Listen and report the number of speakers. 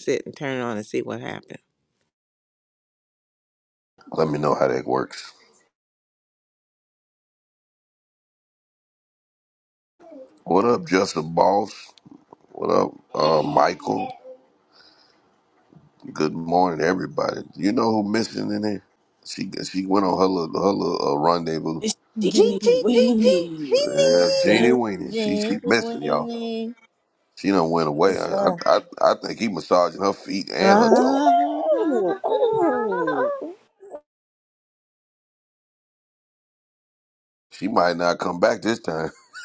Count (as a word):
four